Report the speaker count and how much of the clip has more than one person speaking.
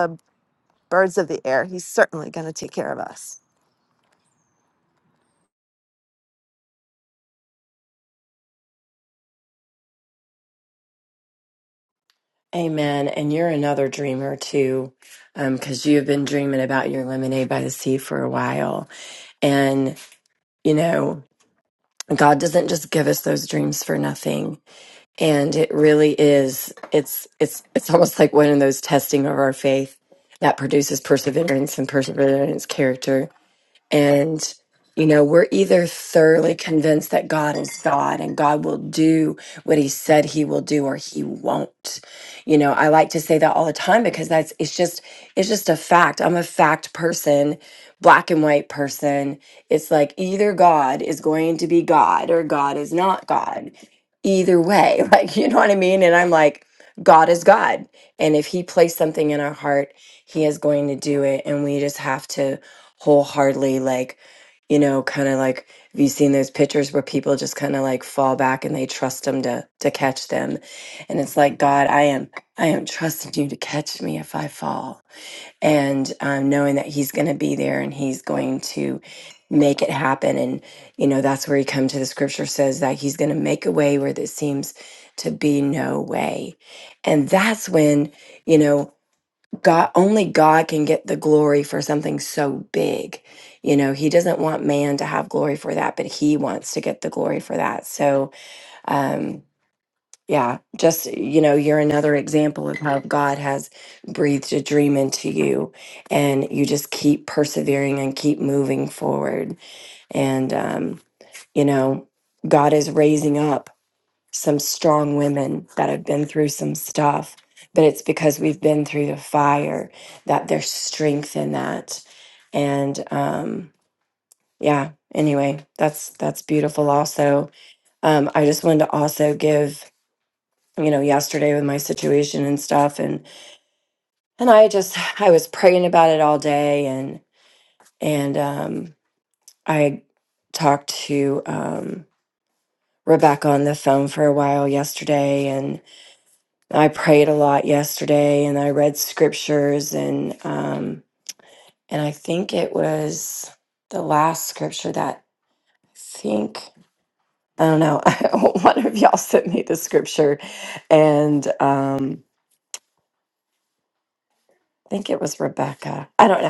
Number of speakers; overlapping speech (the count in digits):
2, no overlap